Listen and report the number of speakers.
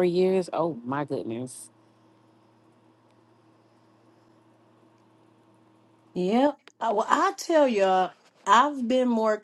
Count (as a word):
two